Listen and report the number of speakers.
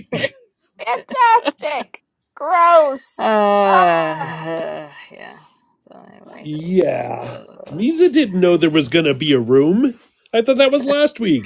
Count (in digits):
3